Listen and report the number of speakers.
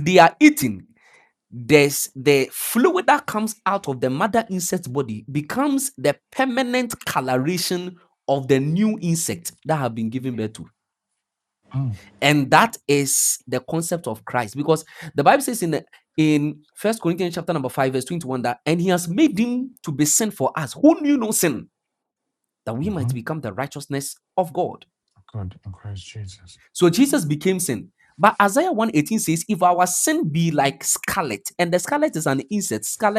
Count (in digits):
2